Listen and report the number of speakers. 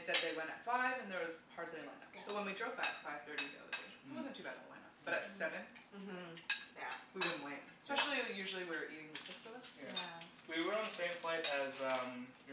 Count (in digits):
3